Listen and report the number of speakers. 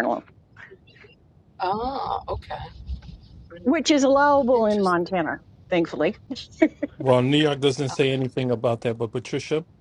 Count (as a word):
three